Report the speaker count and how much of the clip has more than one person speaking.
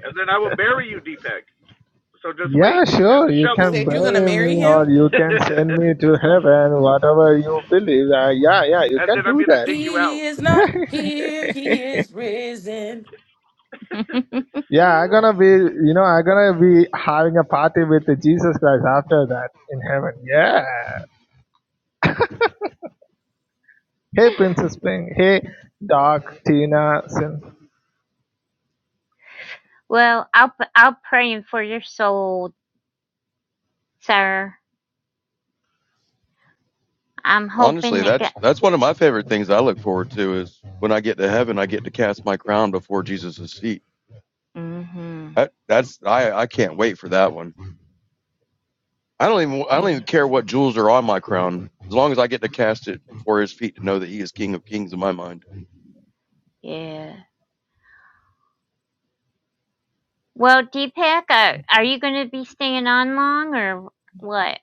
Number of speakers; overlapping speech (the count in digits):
5, about 7%